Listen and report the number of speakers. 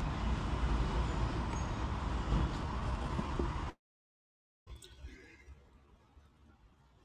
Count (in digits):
0